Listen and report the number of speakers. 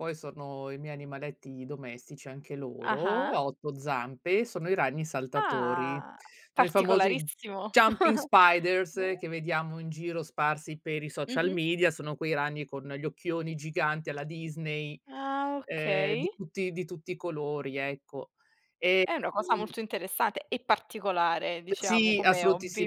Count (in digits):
2